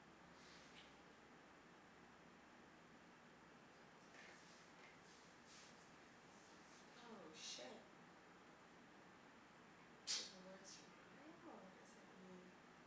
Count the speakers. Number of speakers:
1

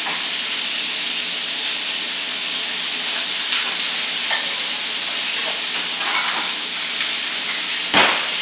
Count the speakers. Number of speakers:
0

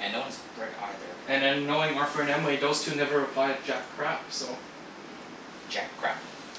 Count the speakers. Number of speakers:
2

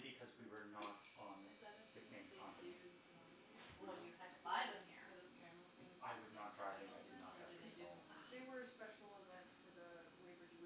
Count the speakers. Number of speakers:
4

